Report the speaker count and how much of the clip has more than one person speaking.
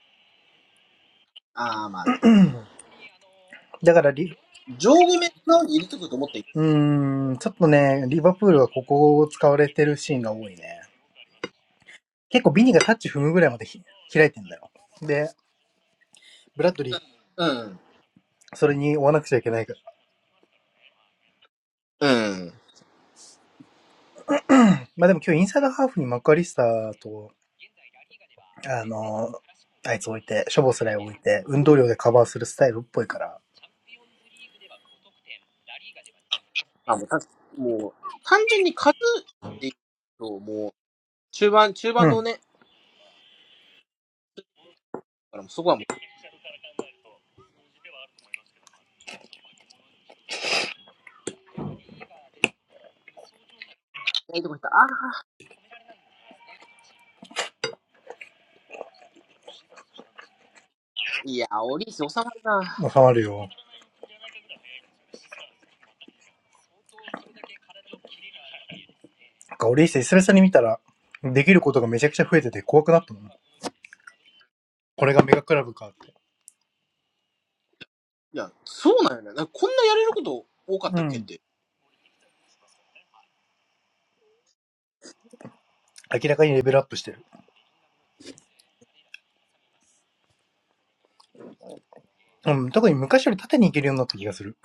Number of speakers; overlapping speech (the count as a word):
two, about 1%